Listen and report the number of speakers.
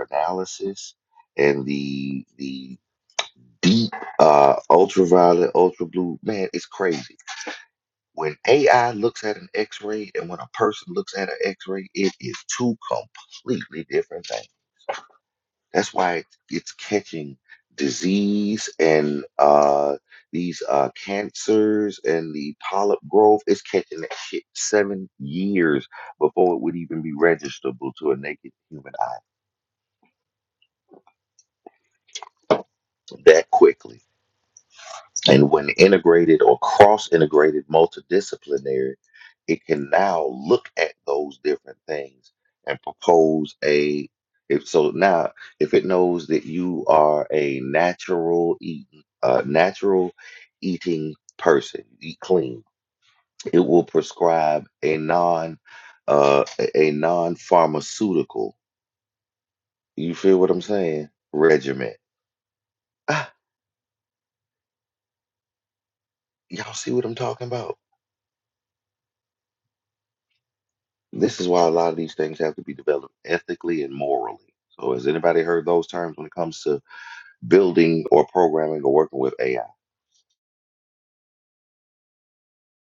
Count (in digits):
1